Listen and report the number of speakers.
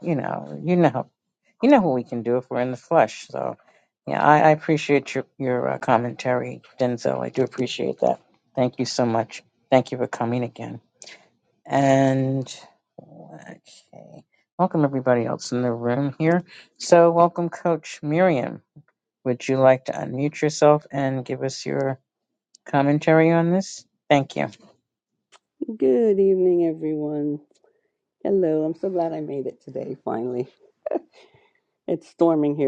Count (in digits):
2